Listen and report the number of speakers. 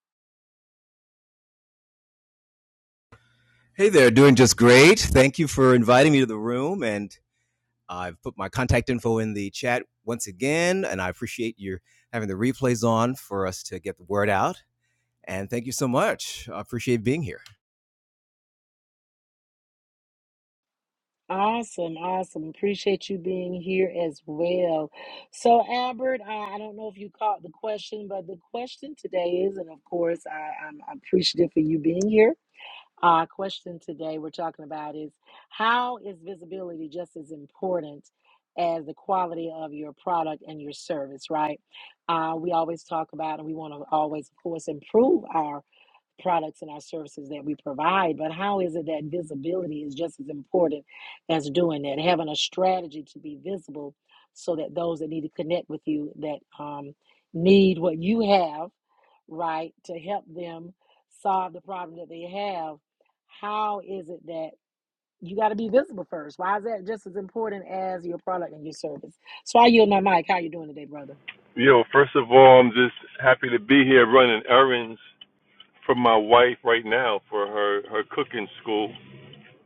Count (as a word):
three